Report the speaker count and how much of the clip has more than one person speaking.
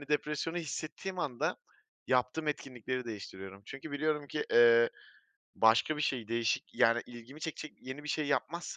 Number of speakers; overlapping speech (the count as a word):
one, no overlap